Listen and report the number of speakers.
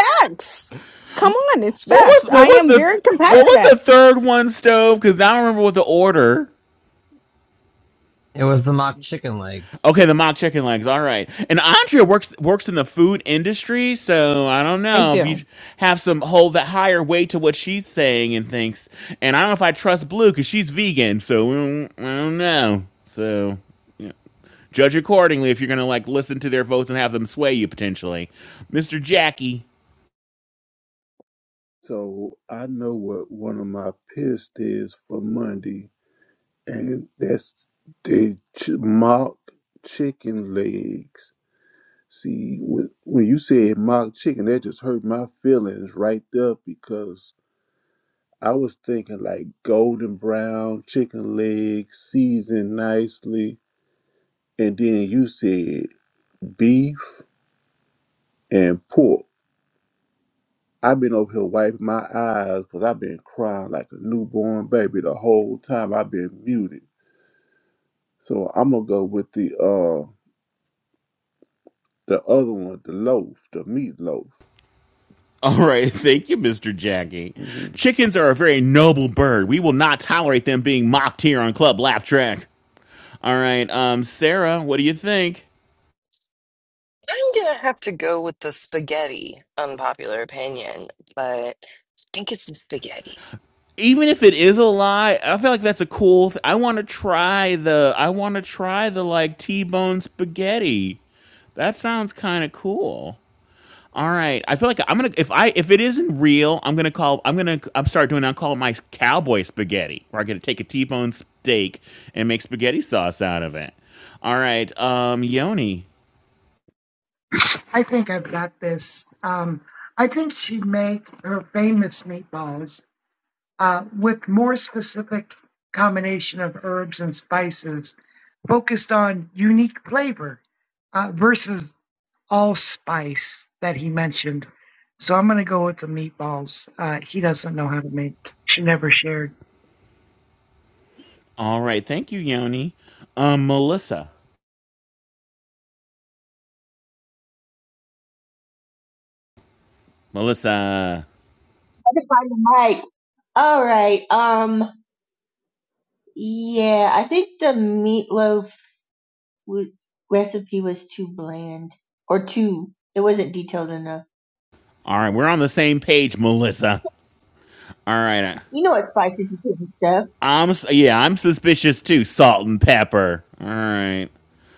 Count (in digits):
7